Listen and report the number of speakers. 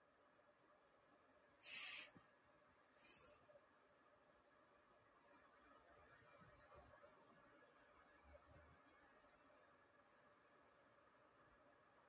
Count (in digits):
0